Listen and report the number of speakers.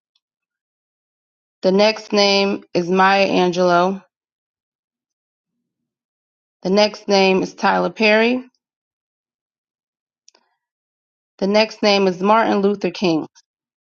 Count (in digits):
1